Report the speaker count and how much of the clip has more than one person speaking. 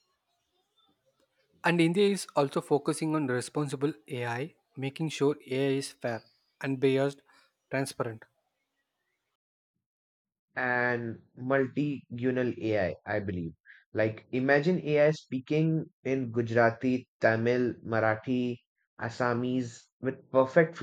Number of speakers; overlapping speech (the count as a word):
two, no overlap